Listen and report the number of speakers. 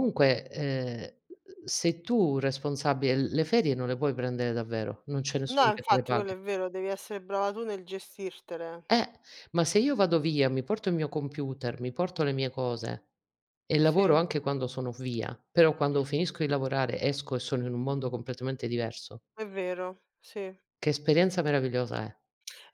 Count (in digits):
2